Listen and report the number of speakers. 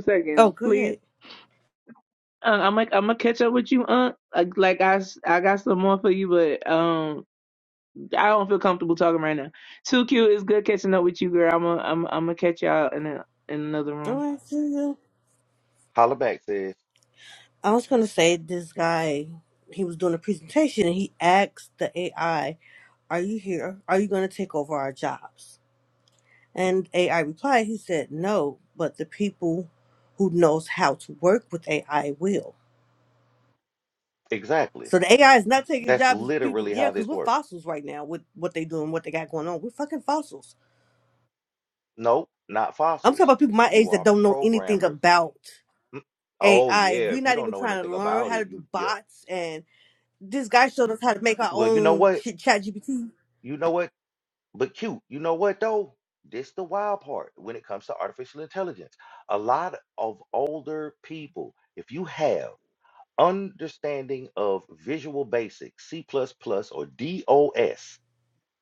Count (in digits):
3